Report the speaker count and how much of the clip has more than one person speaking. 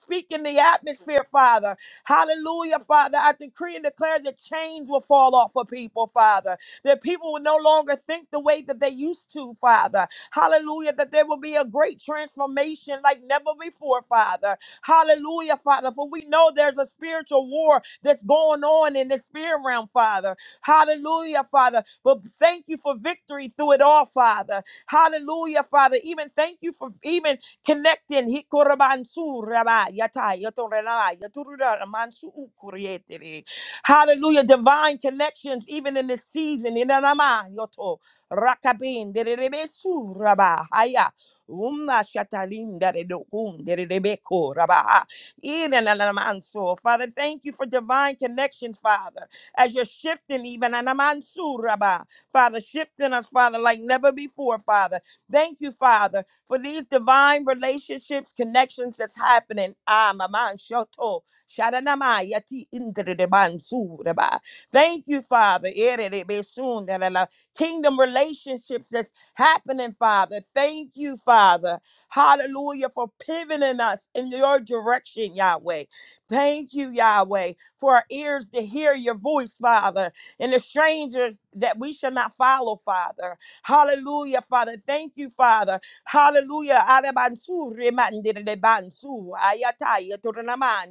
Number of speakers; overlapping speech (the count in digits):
1, no overlap